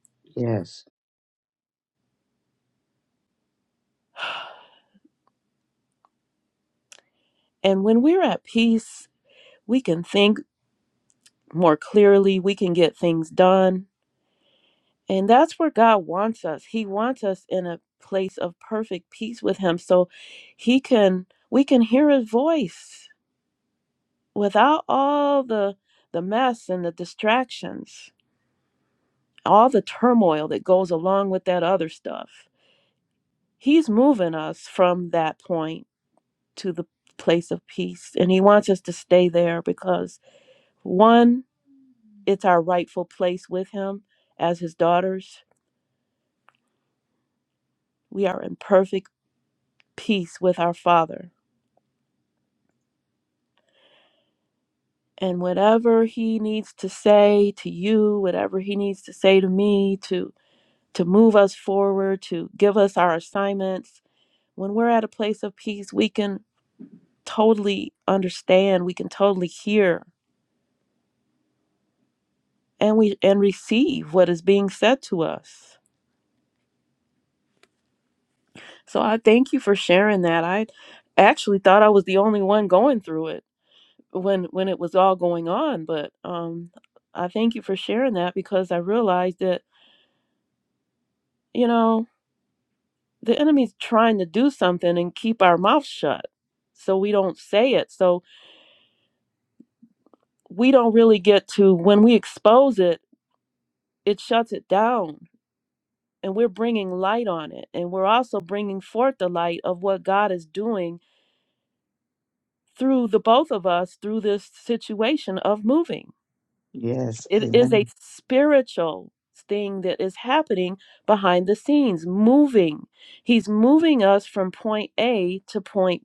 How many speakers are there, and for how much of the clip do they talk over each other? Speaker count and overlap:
two, under 1%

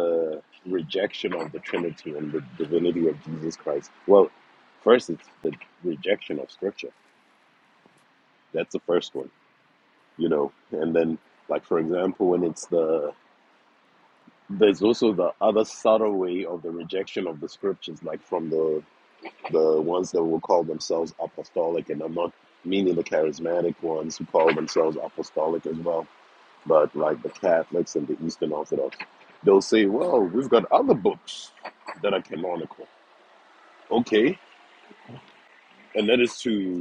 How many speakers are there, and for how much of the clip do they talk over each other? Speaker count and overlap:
one, no overlap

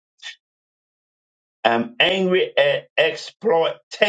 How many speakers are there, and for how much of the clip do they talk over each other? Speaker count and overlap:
one, no overlap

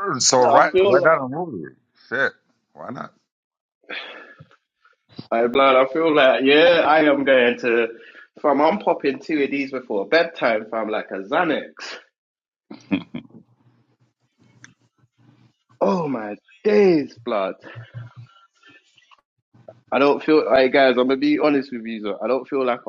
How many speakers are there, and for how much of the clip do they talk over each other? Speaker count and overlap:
two, about 4%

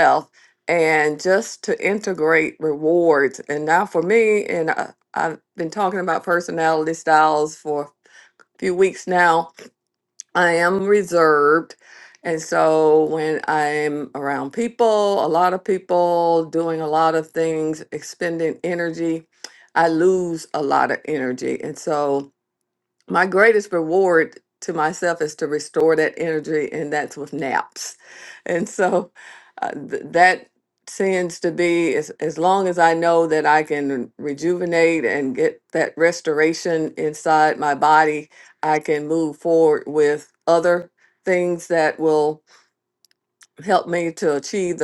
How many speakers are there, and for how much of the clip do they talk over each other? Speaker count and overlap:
one, no overlap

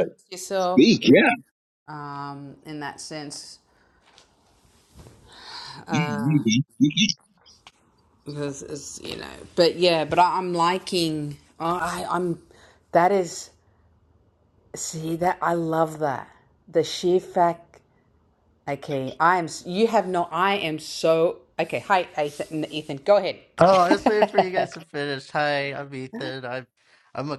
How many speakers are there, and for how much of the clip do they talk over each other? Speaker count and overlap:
three, under 1%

